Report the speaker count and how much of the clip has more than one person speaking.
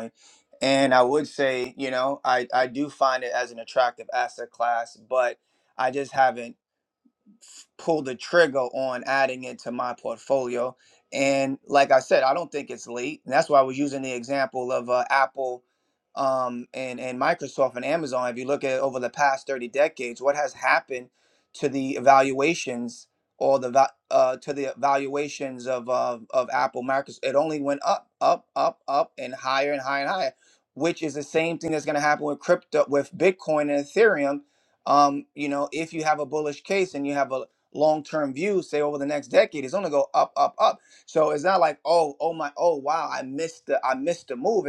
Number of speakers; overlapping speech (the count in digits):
1, no overlap